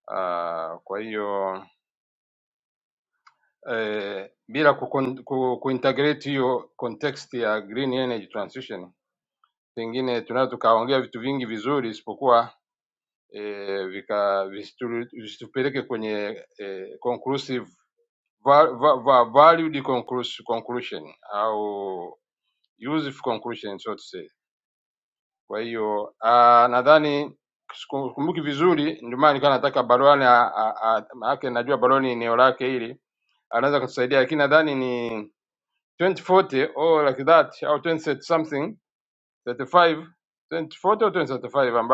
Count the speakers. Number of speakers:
1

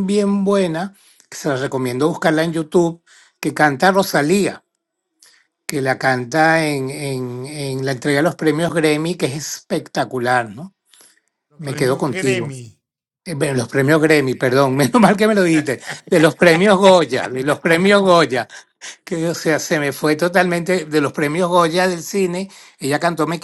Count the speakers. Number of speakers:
1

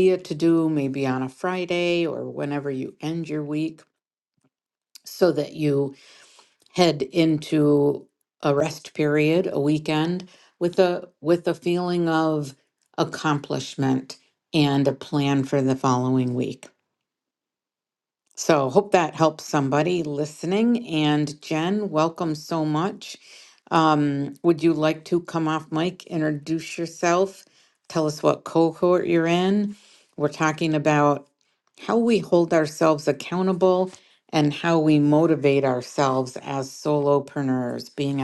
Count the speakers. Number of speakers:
1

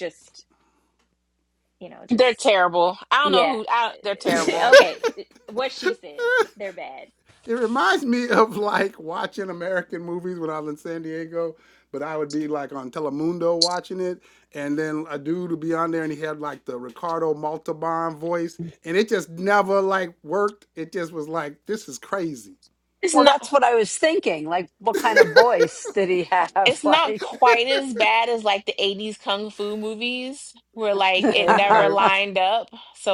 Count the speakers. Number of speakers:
4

